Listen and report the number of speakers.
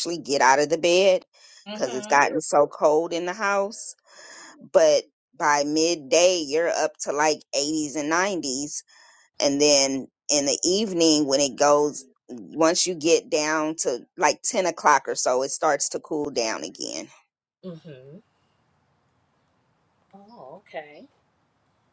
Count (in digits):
2